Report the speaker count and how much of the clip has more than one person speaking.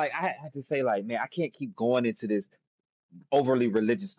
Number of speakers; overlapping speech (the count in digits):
1, no overlap